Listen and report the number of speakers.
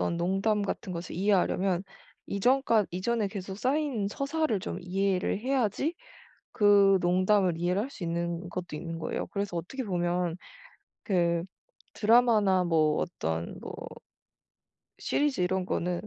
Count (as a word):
one